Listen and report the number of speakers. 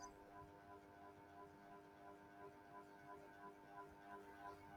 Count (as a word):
zero